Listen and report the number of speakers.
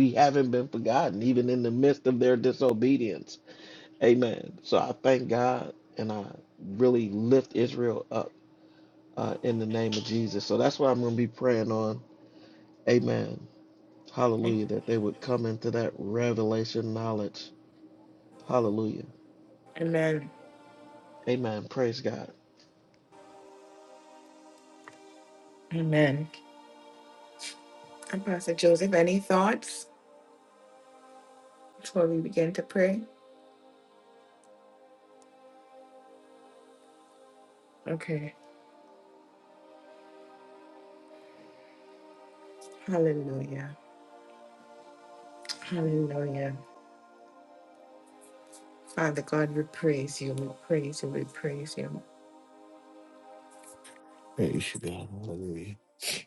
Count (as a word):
three